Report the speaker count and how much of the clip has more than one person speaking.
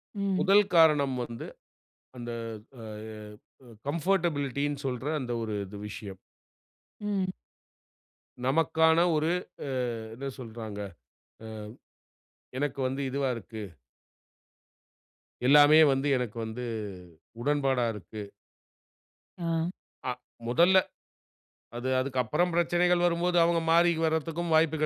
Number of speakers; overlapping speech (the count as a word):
two, under 1%